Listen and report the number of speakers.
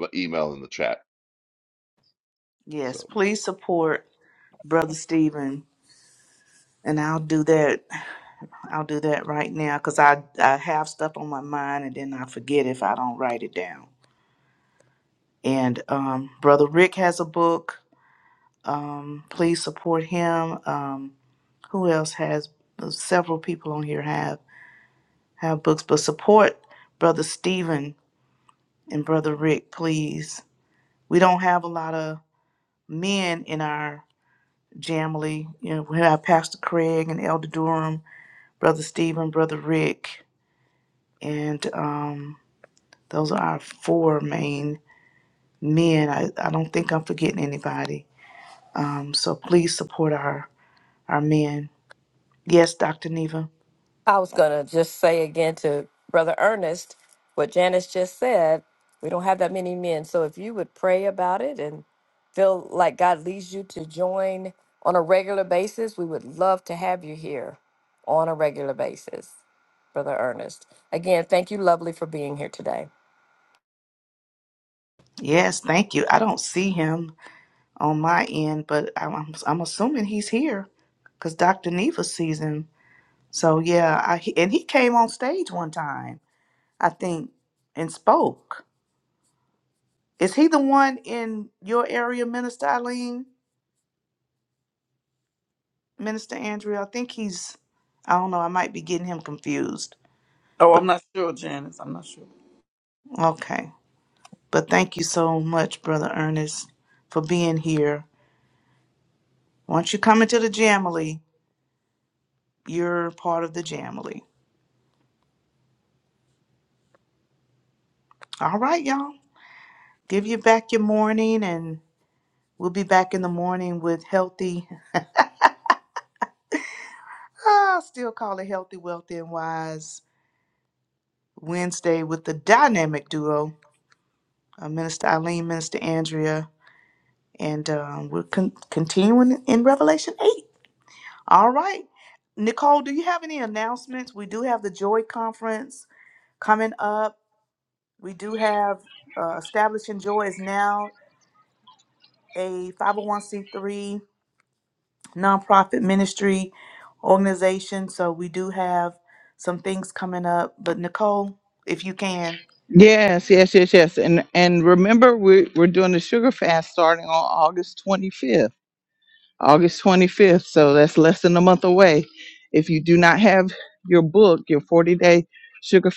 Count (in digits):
5